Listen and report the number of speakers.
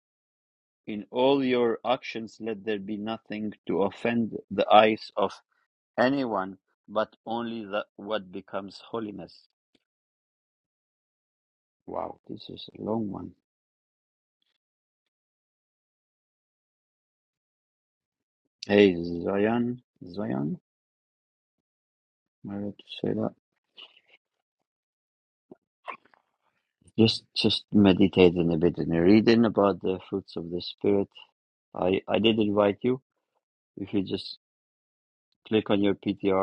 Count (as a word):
one